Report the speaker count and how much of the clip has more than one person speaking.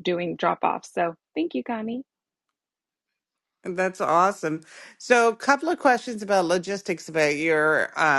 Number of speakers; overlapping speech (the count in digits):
2, no overlap